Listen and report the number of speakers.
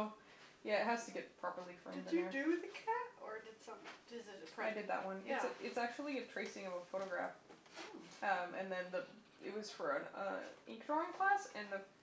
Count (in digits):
2